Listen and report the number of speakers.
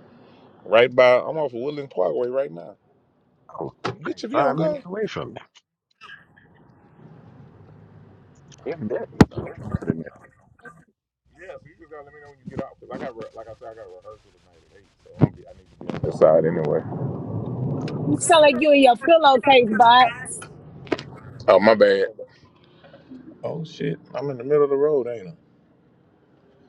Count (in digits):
3